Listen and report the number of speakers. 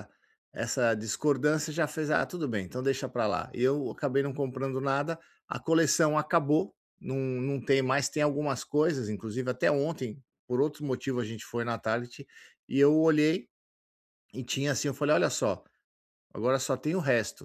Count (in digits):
1